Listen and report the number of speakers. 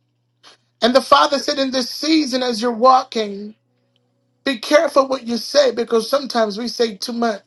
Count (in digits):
1